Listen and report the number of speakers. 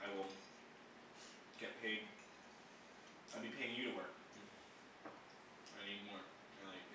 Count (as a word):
one